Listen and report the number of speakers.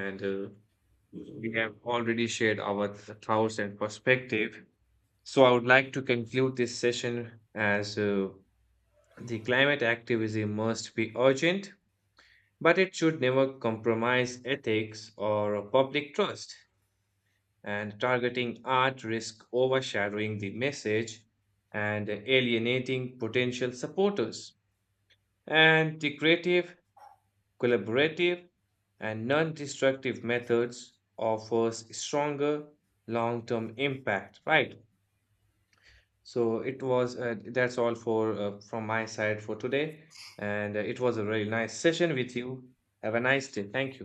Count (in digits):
1